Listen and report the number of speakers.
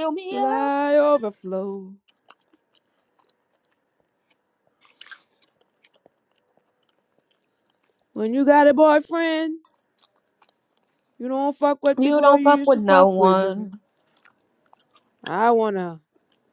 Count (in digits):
2